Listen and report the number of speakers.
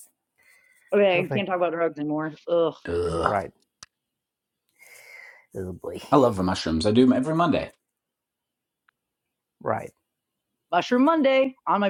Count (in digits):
3